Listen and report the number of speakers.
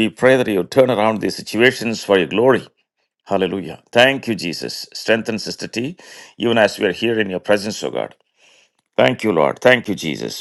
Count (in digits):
1